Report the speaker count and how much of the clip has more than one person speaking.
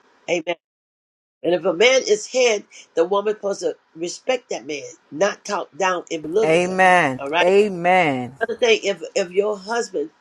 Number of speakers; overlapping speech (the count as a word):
two, about 7%